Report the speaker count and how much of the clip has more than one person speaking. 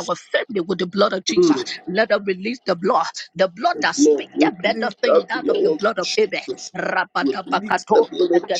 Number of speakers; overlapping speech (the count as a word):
two, about 49%